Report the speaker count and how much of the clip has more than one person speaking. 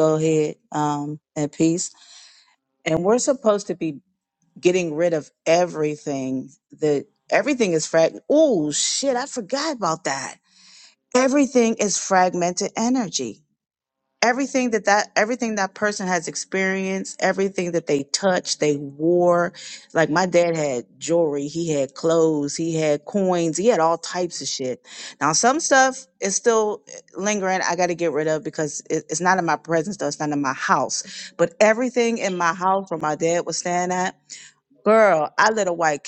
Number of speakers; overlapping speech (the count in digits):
1, no overlap